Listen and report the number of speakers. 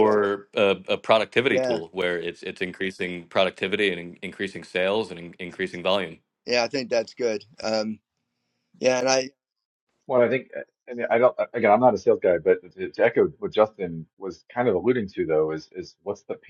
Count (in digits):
3